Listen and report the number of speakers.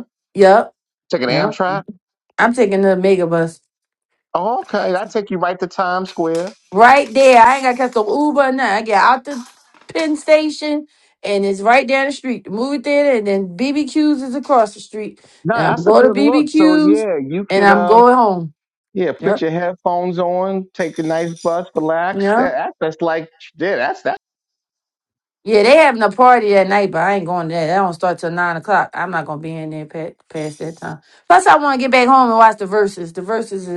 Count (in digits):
2